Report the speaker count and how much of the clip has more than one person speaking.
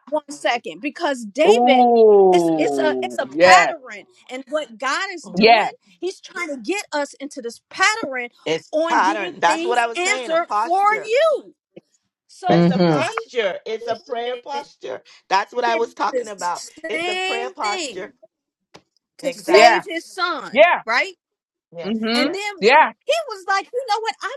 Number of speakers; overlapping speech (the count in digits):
3, about 33%